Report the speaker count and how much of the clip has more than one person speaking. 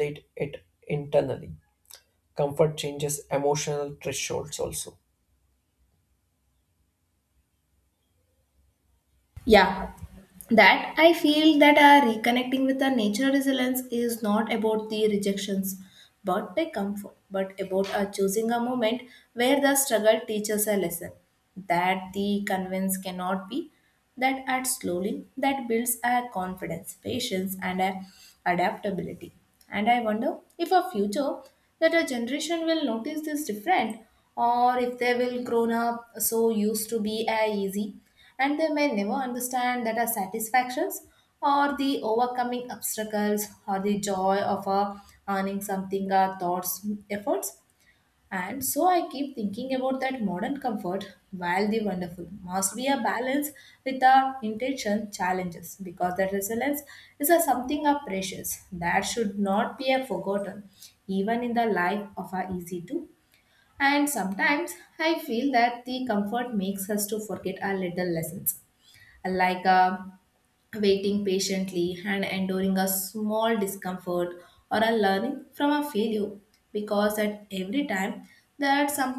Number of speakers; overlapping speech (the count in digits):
2, no overlap